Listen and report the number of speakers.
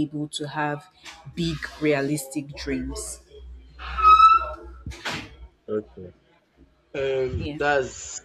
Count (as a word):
two